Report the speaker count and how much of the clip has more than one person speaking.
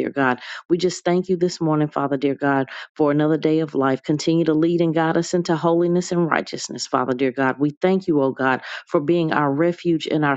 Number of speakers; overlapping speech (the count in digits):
1, no overlap